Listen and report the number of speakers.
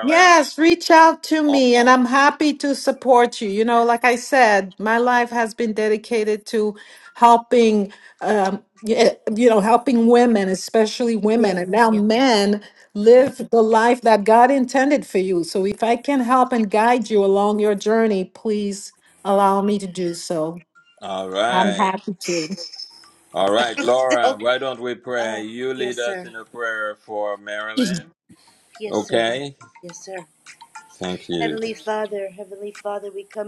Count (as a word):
three